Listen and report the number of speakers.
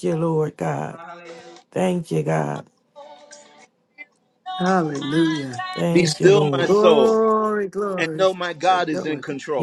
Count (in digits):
4